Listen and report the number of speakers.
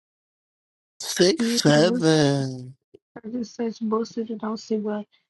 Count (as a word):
two